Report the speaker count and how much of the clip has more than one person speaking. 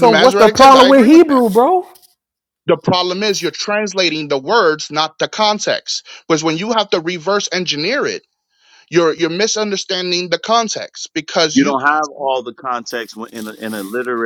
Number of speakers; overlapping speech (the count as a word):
three, about 11%